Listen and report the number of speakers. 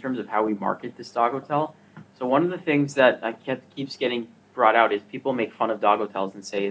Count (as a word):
one